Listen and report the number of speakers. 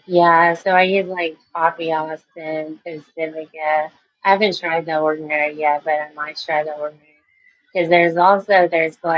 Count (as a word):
one